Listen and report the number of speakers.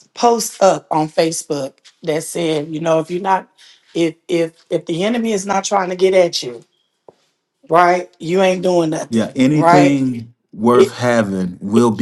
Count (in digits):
2